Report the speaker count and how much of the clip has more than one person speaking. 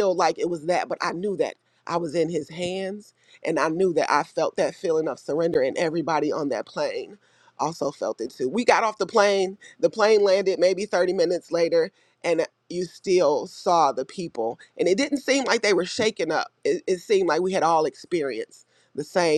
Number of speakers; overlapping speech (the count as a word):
one, no overlap